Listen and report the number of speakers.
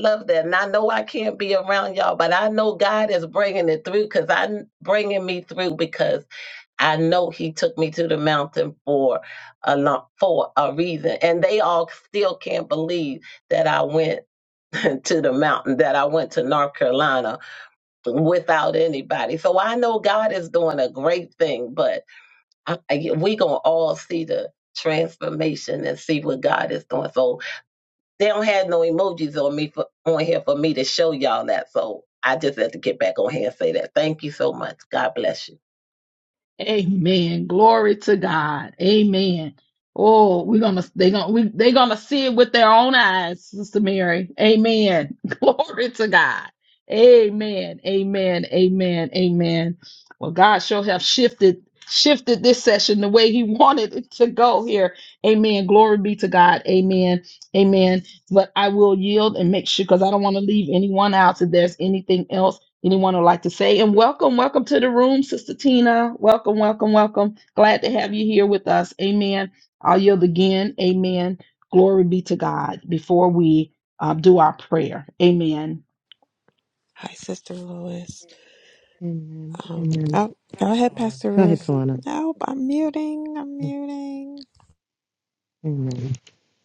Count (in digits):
4